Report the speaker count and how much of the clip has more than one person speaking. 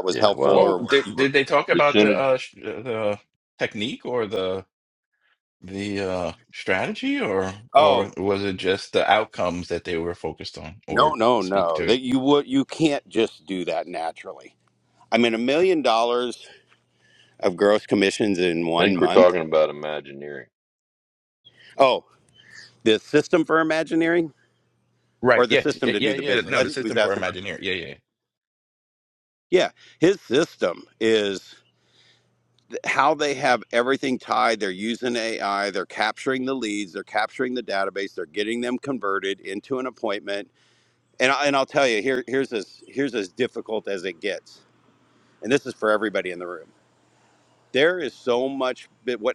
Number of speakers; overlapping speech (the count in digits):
3, about 11%